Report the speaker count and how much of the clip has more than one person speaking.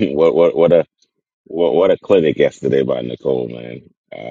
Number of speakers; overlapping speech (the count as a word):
one, no overlap